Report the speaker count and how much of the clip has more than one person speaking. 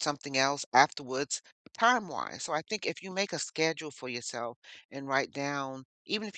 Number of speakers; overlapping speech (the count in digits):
1, no overlap